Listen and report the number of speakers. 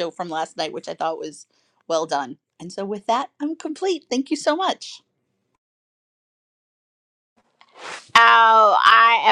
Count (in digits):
2